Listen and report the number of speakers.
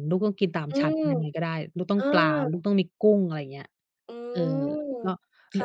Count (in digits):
2